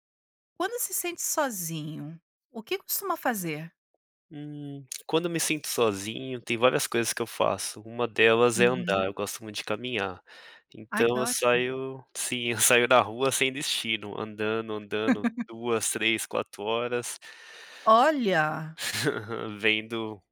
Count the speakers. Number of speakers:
two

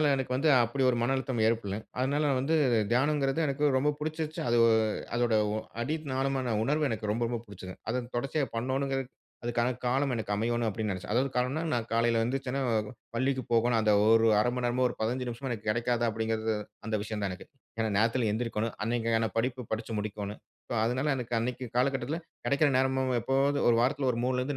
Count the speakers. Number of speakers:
one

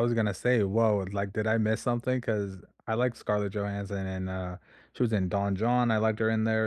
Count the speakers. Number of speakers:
one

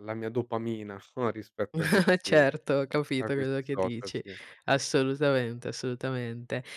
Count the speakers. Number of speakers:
two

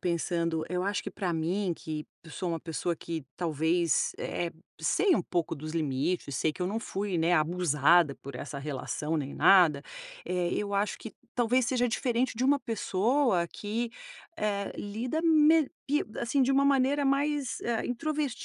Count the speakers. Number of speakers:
one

